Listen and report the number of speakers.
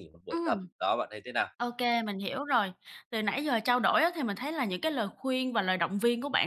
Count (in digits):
2